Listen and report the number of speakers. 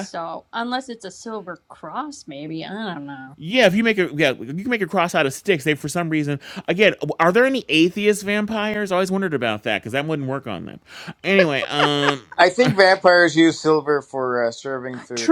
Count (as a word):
three